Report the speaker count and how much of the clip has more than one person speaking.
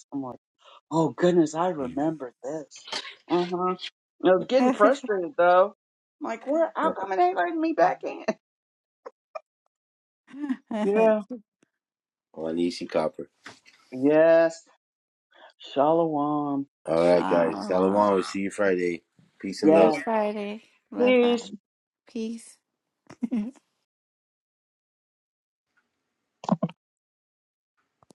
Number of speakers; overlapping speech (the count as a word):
three, about 6%